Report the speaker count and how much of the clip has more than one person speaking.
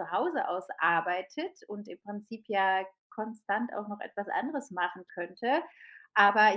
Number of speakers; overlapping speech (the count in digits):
1, no overlap